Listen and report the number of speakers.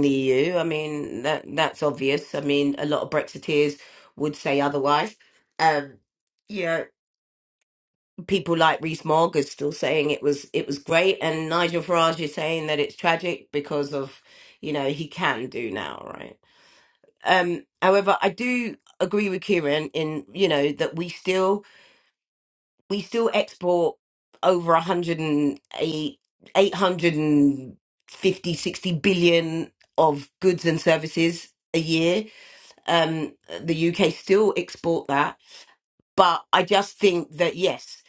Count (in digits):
1